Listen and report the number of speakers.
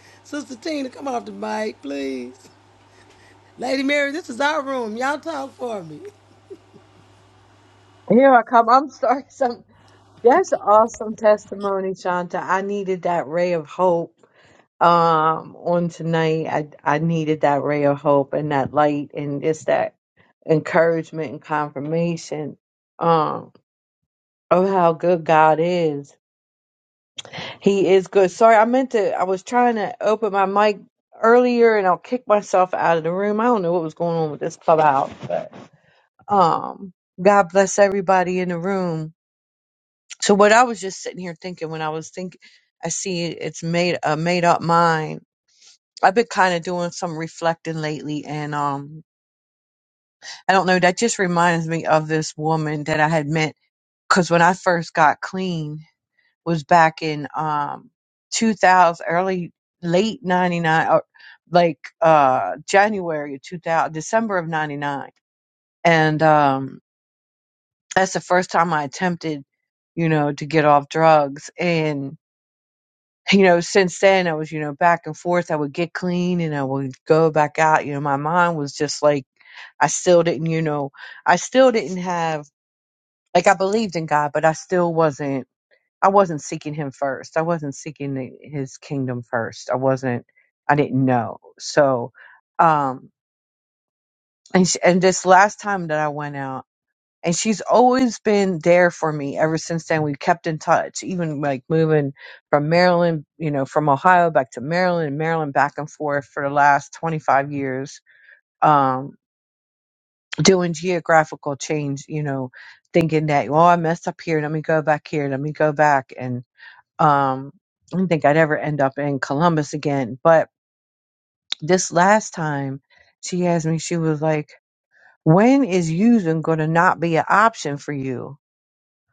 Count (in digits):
2